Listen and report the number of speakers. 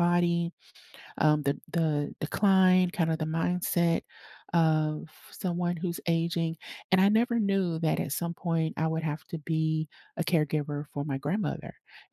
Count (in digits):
1